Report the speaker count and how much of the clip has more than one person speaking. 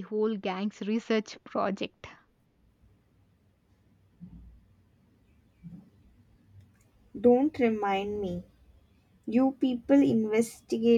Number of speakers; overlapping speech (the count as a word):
two, no overlap